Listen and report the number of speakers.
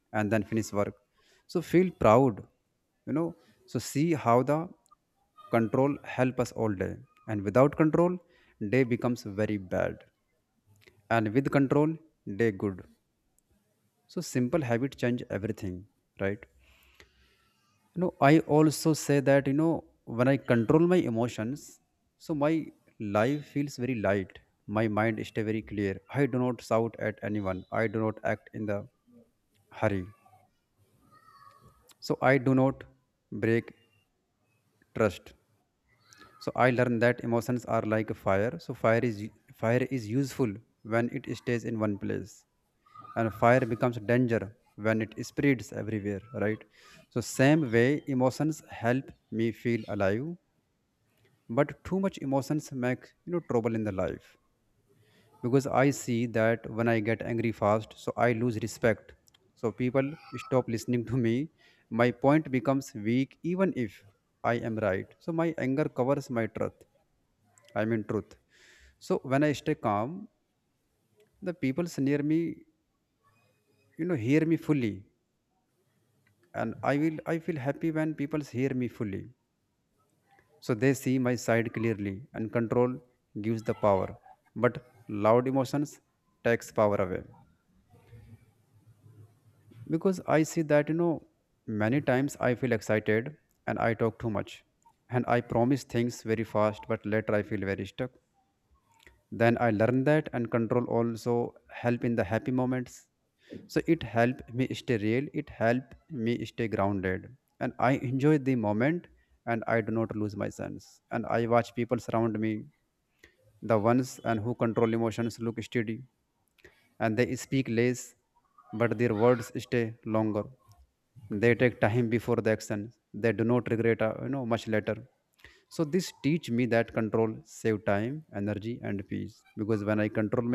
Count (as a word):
one